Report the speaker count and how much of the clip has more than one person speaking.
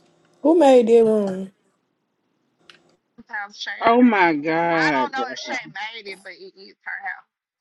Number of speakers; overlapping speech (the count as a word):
three, about 7%